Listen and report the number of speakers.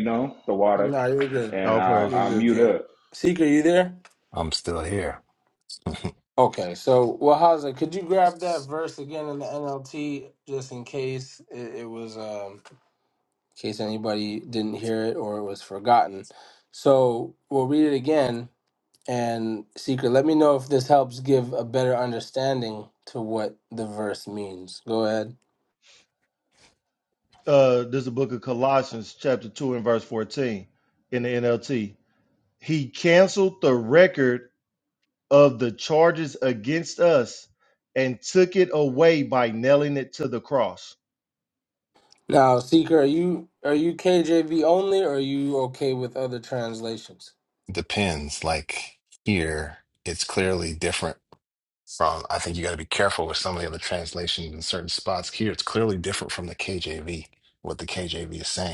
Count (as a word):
four